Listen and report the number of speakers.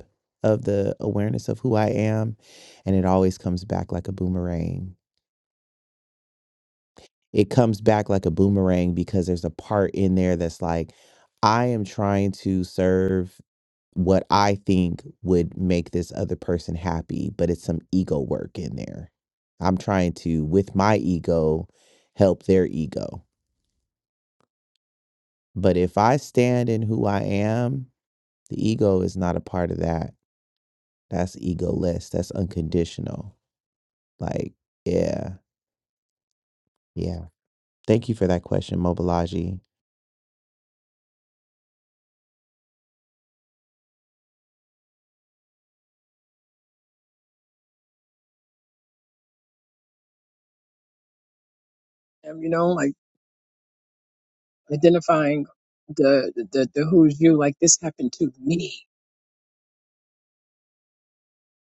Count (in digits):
2